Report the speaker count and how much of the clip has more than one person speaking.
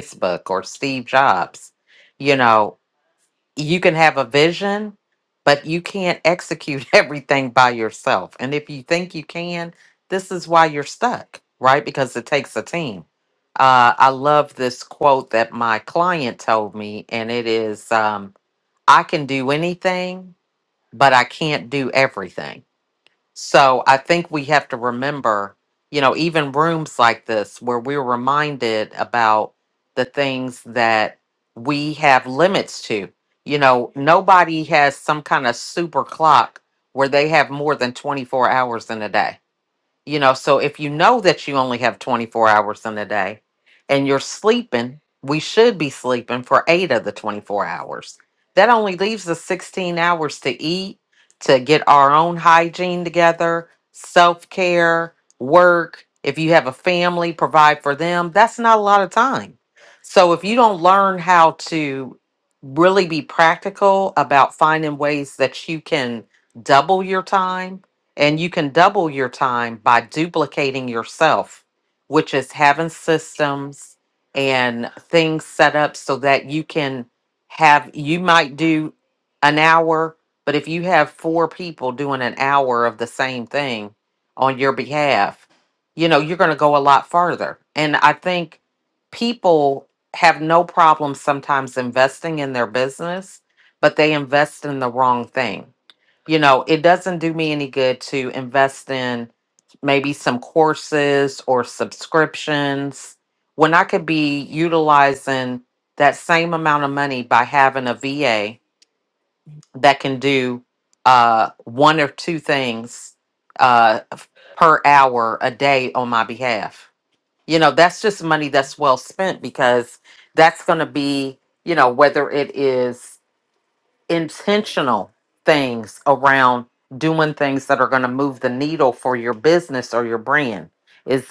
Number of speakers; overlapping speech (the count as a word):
one, no overlap